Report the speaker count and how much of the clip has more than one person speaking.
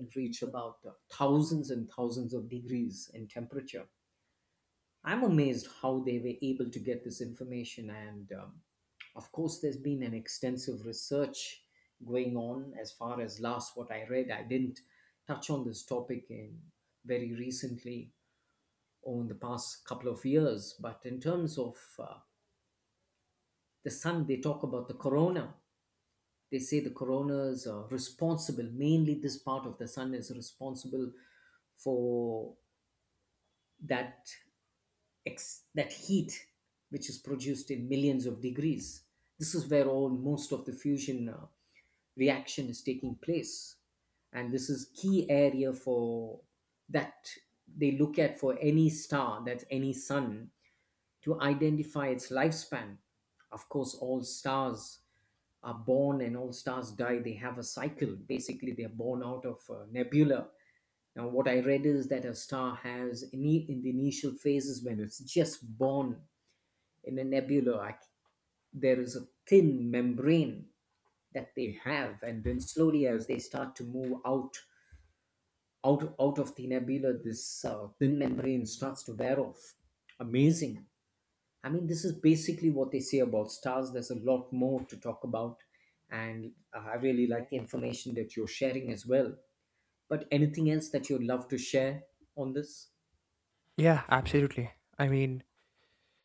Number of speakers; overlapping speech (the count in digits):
2, no overlap